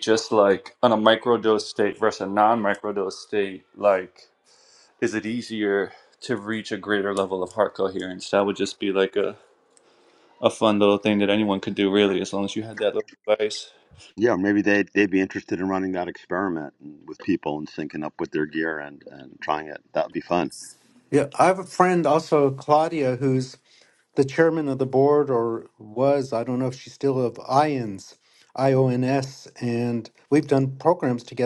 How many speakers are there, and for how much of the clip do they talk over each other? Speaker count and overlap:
3, no overlap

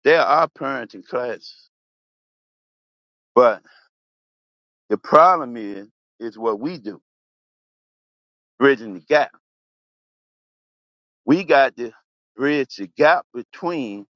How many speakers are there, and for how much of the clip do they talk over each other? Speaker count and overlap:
1, no overlap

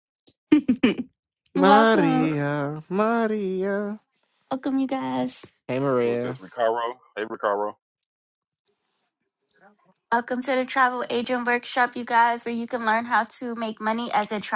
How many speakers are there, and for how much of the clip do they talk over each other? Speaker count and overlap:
3, about 9%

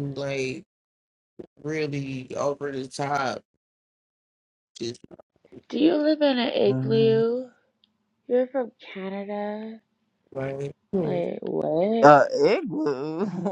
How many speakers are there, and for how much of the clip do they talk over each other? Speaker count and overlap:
3, about 6%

